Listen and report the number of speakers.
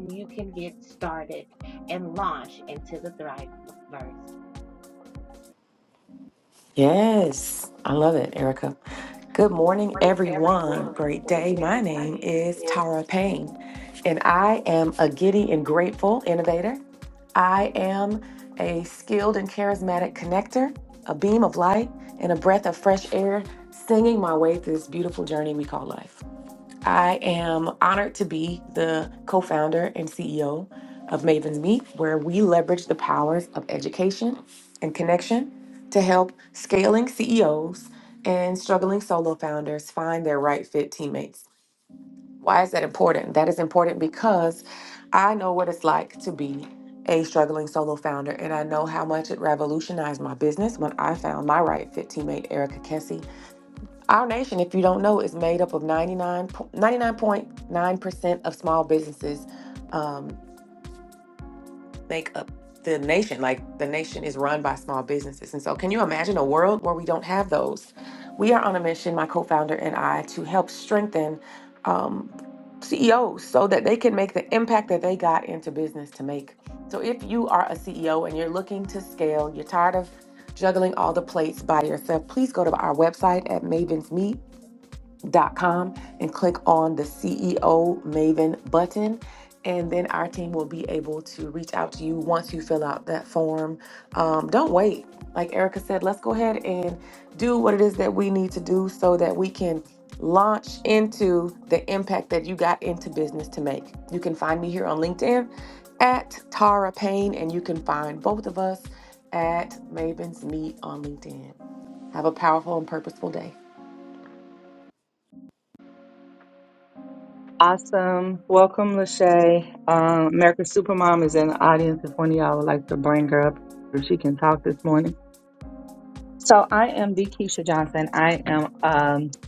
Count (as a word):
three